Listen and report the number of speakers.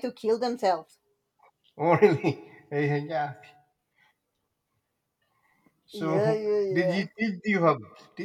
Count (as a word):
two